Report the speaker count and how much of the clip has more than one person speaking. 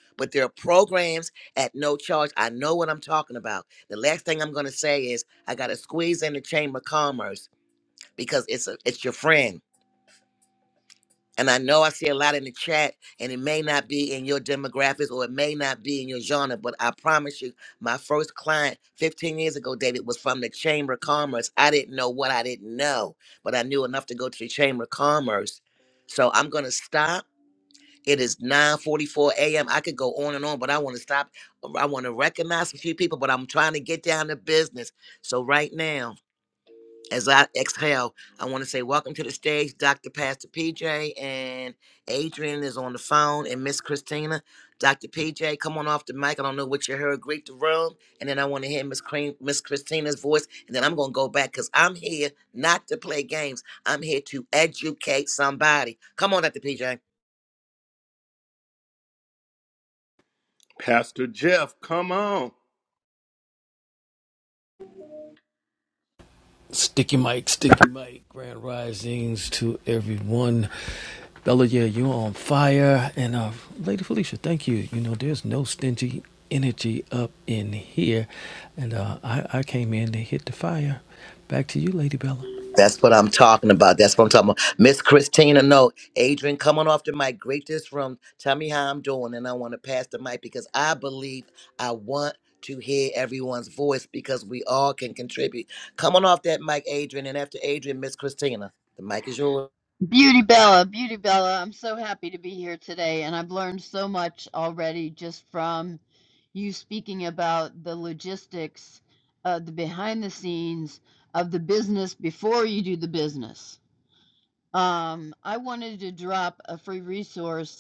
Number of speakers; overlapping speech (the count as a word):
four, no overlap